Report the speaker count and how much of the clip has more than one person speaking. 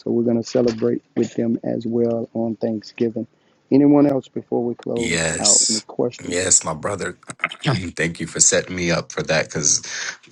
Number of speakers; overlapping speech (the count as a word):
two, about 10%